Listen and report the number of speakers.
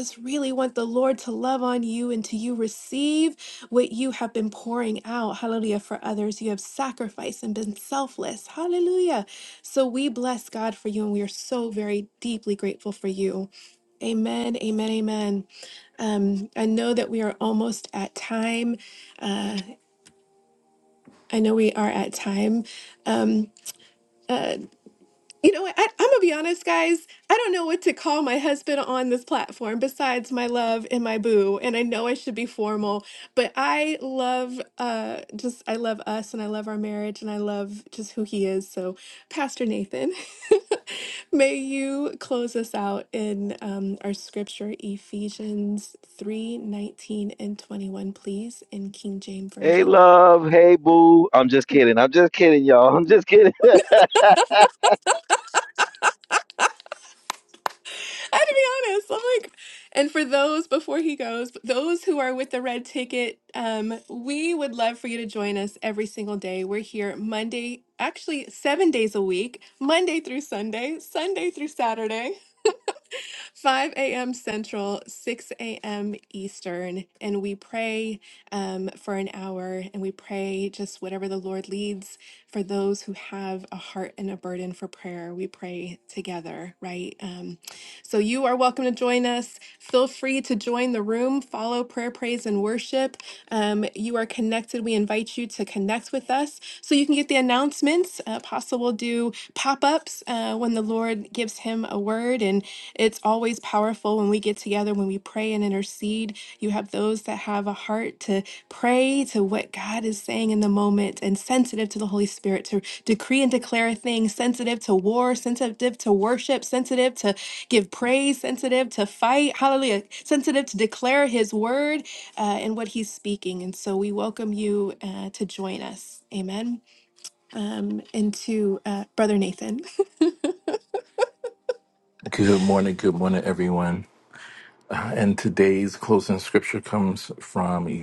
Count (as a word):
three